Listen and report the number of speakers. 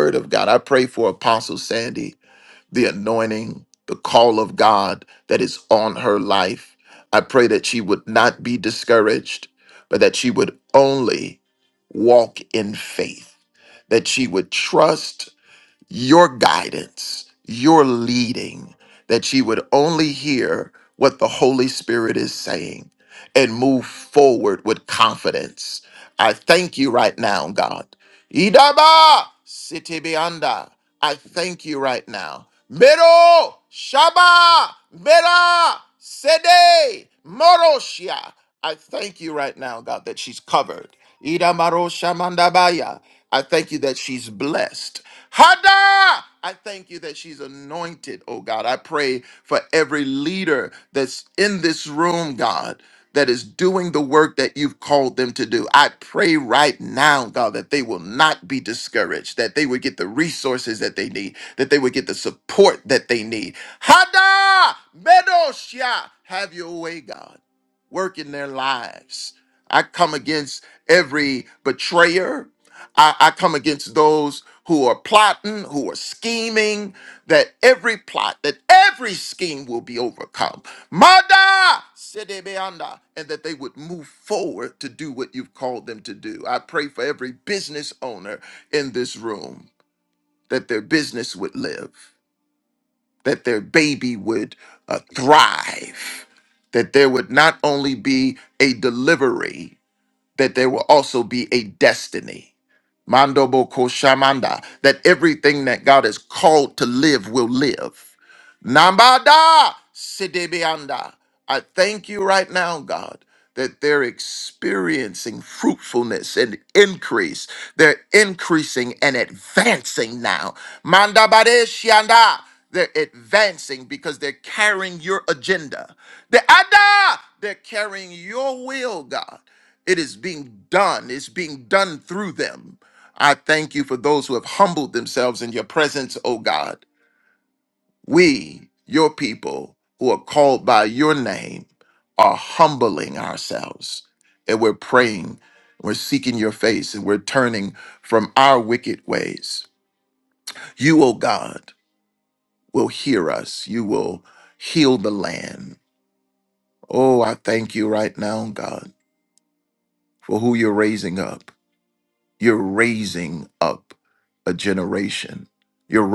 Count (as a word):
one